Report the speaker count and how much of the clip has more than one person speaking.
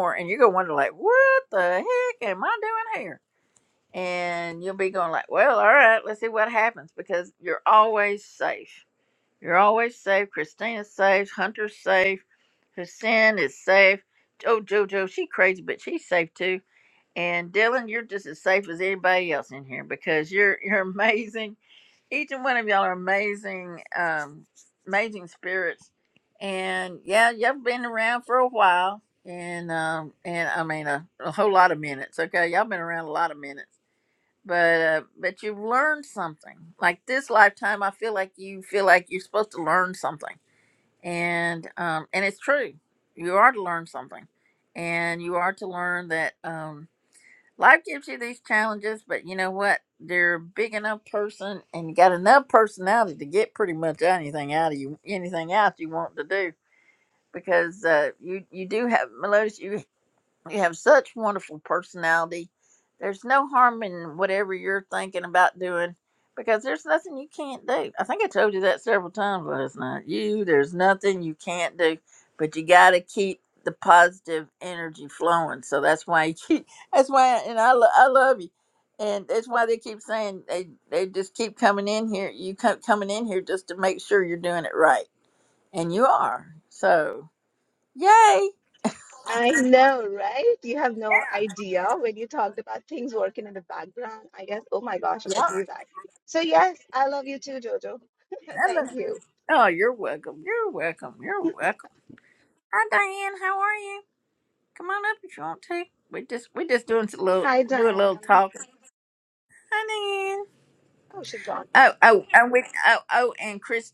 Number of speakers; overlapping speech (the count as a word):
two, about 1%